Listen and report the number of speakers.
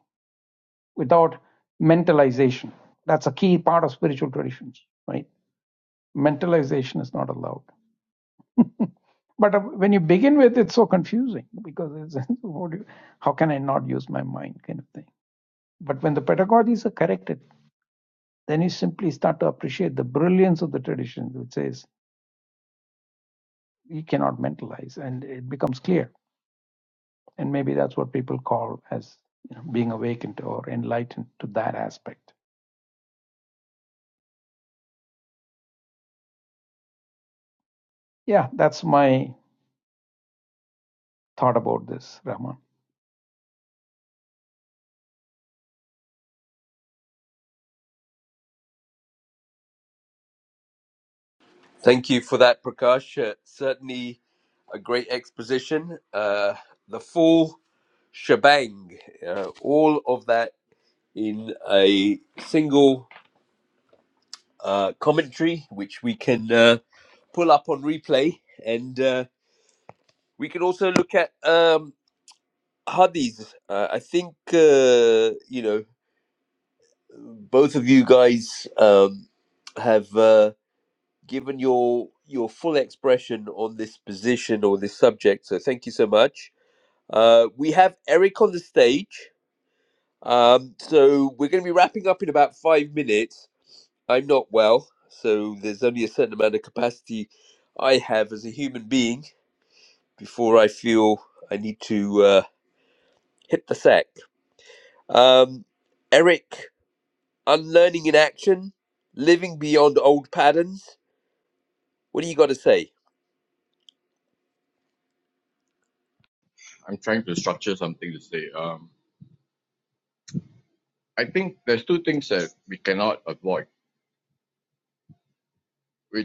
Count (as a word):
three